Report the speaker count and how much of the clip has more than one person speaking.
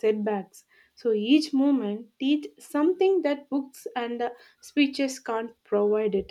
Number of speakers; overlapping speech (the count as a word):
one, no overlap